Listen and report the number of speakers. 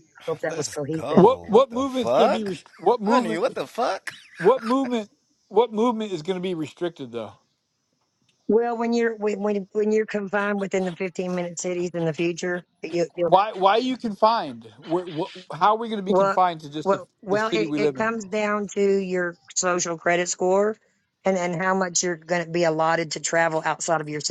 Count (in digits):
3